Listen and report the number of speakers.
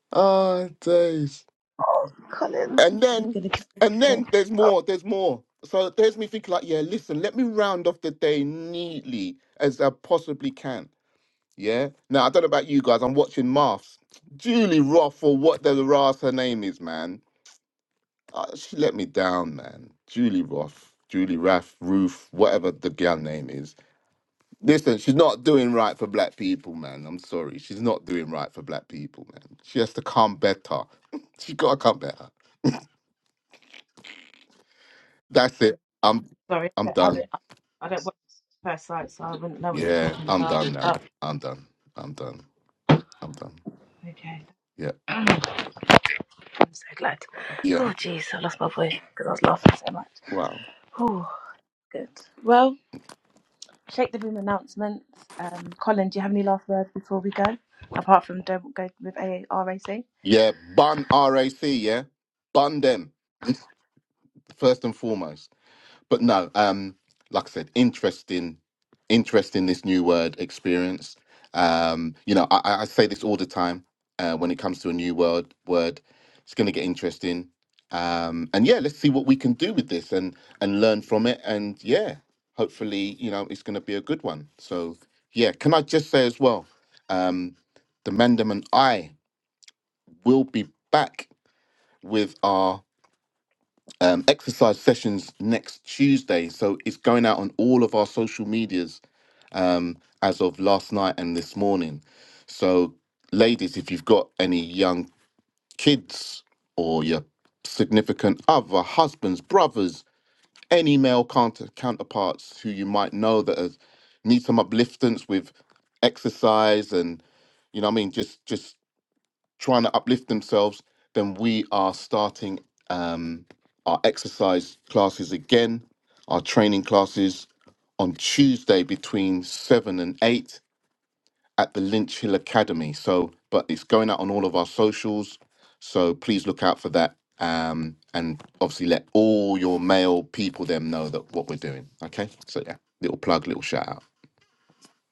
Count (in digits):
2